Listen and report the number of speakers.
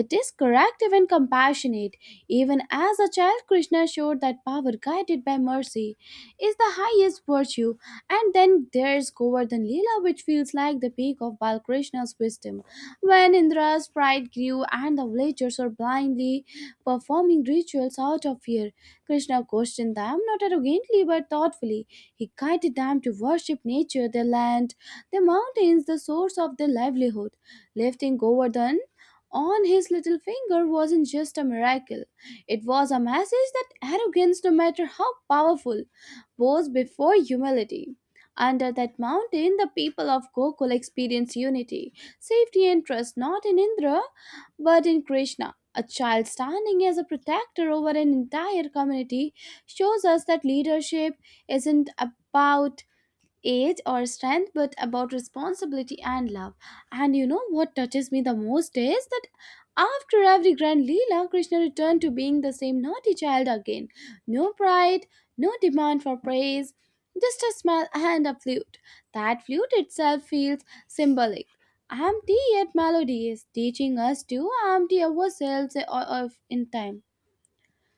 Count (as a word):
one